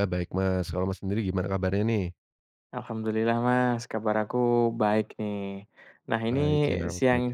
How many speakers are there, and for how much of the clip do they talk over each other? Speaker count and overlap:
2, about 7%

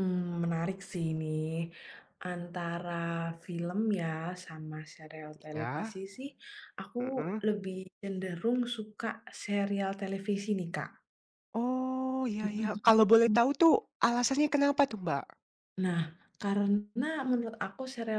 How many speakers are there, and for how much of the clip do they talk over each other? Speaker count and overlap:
2, about 5%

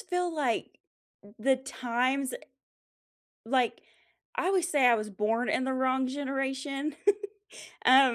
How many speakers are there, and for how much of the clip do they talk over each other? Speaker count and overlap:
1, no overlap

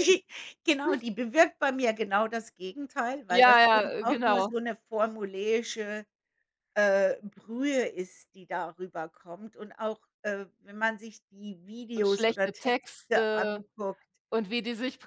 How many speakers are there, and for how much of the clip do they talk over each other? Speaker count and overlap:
2, about 15%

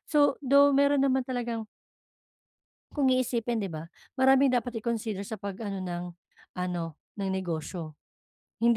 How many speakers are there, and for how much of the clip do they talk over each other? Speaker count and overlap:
1, no overlap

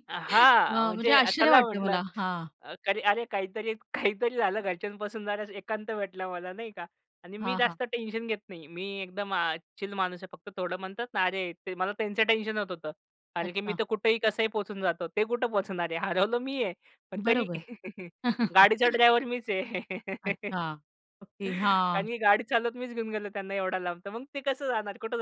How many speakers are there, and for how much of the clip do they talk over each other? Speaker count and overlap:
2, about 9%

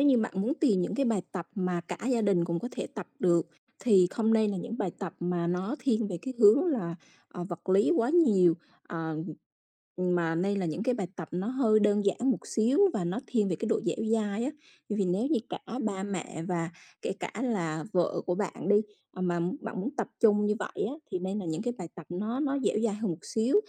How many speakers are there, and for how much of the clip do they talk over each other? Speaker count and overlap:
1, no overlap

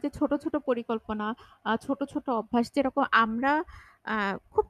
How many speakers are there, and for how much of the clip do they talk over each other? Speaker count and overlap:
1, no overlap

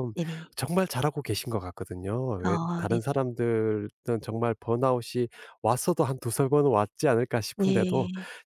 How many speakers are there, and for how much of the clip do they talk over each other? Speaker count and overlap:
2, about 13%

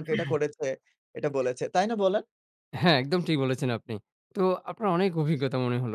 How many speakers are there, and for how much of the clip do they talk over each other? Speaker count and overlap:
2, no overlap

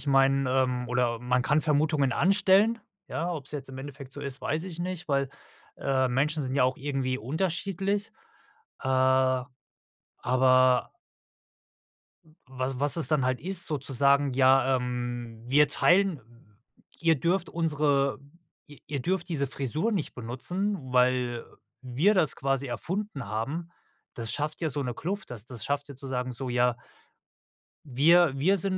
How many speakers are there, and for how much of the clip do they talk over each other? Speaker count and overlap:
1, no overlap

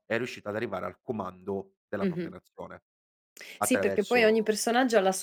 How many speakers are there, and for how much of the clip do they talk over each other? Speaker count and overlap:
2, about 23%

